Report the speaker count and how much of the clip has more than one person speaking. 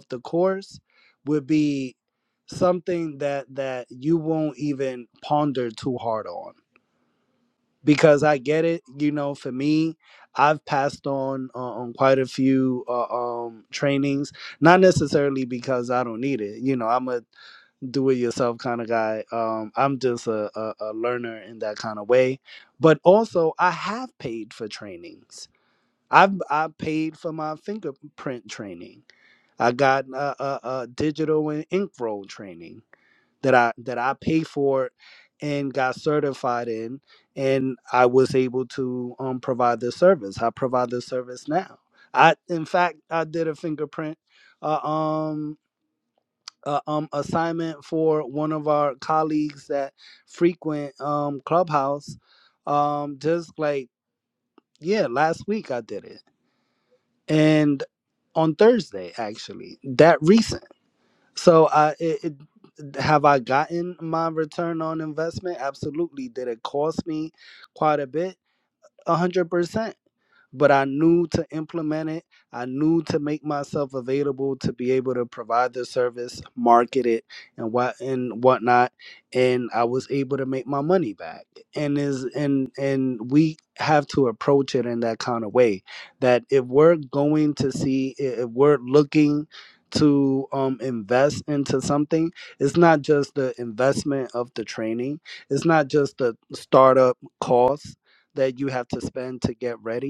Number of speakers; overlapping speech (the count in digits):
1, no overlap